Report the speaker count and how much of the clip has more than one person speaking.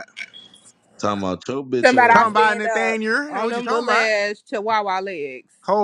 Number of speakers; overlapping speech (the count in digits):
3, about 34%